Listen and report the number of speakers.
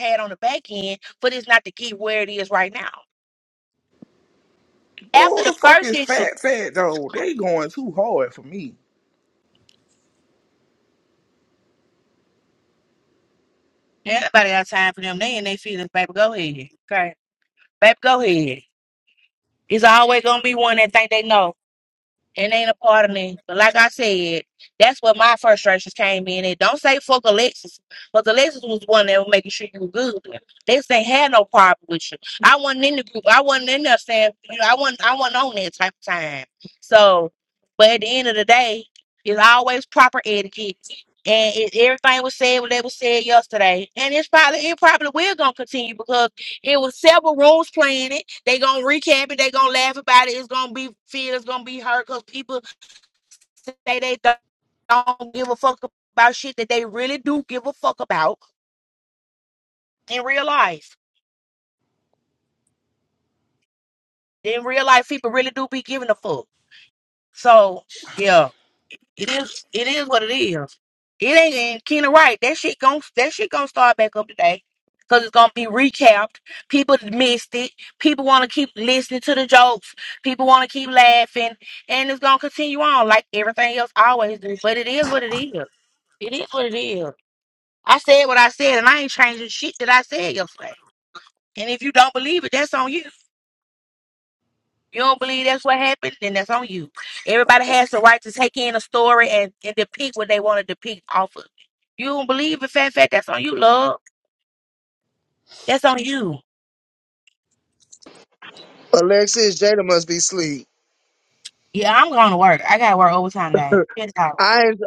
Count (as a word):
three